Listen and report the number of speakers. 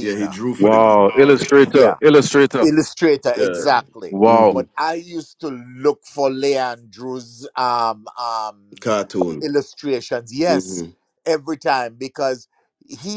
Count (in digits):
3